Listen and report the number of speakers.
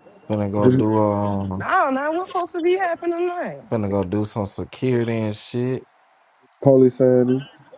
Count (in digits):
3